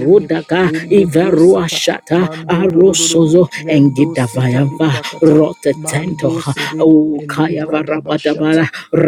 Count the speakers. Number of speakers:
2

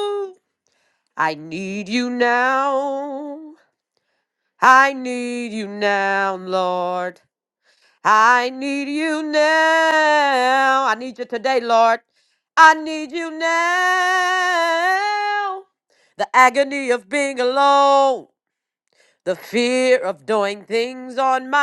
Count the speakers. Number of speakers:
1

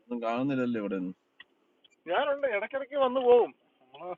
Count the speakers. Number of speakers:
2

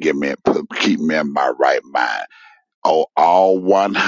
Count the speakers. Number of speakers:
1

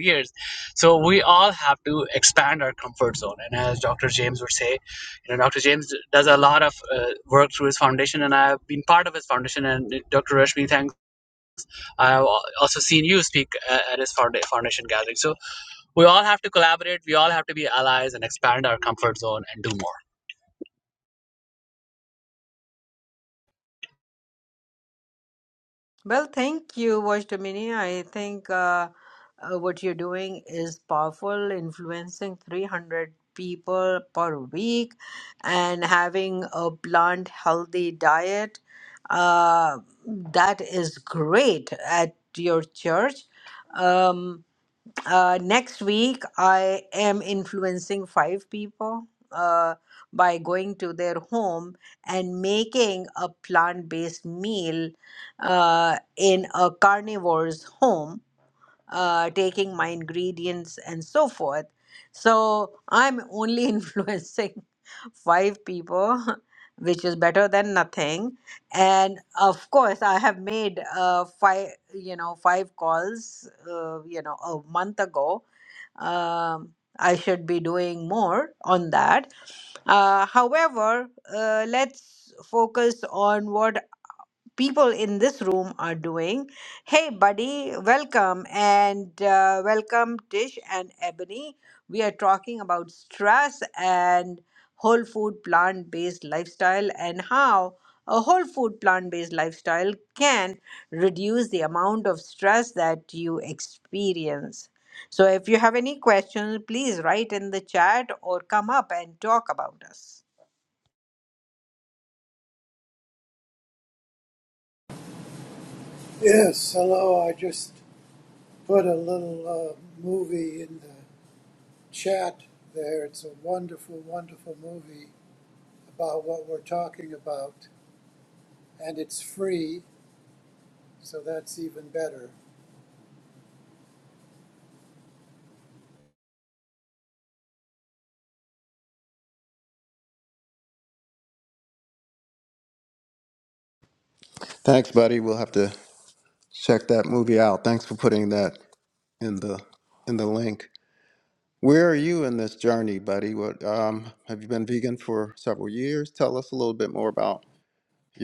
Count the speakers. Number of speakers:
4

